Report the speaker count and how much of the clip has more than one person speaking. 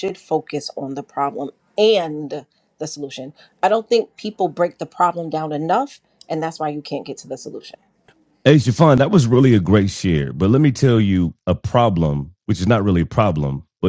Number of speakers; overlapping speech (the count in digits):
2, no overlap